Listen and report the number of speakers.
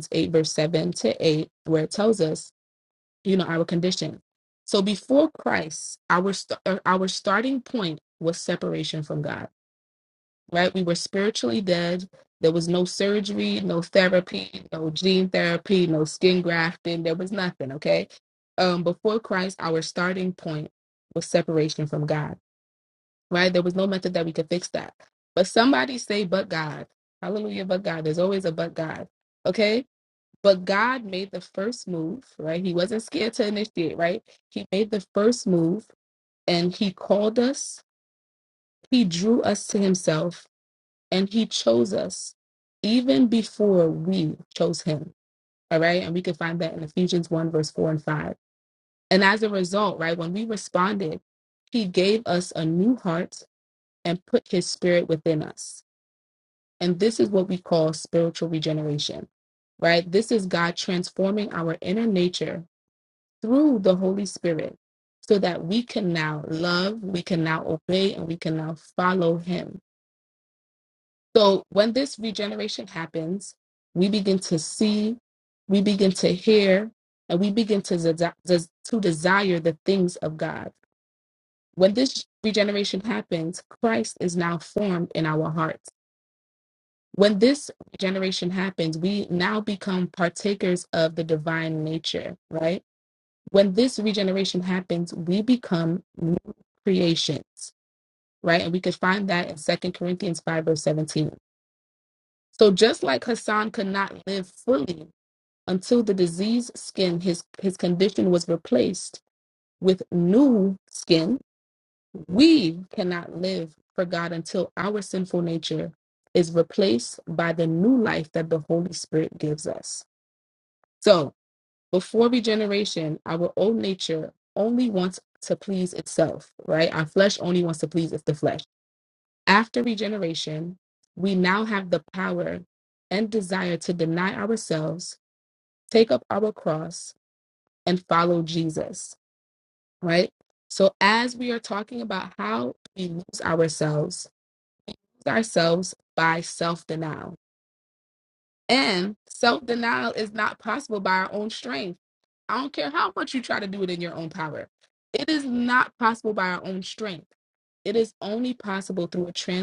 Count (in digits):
1